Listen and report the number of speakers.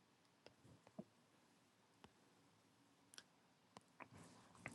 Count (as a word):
zero